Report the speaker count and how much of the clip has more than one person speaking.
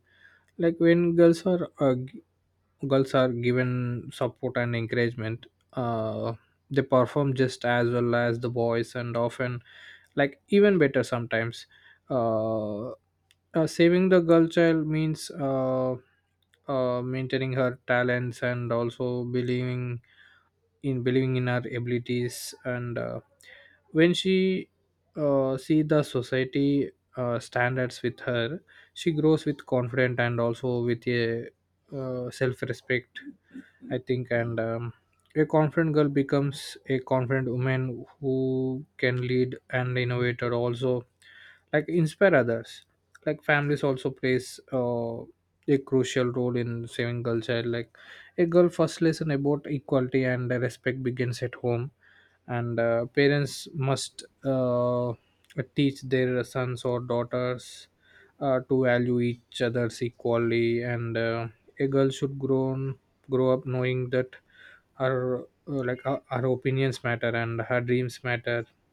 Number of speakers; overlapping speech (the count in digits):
1, no overlap